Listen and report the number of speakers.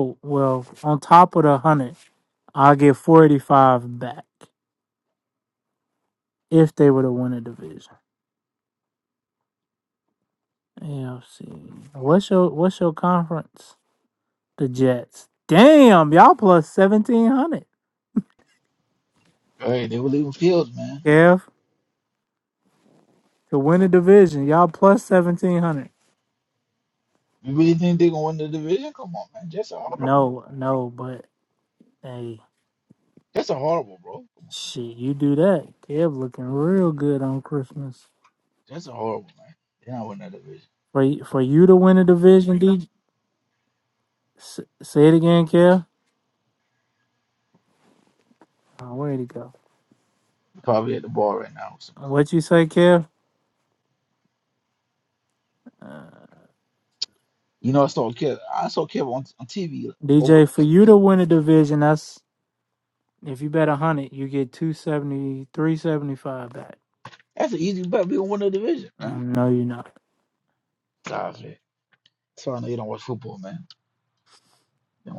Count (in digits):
2